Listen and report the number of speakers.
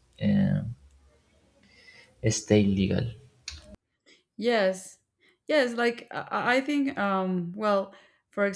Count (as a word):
two